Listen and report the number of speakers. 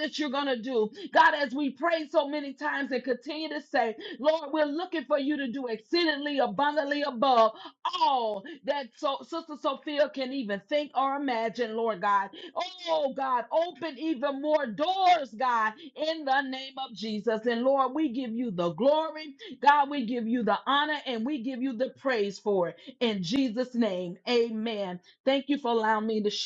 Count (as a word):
one